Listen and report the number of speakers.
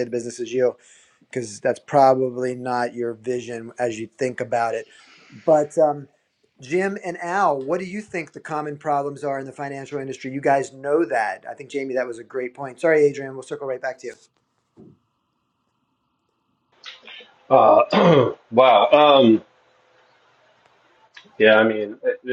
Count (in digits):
2